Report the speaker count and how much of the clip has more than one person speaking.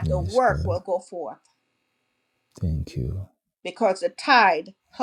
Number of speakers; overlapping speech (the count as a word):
two, about 15%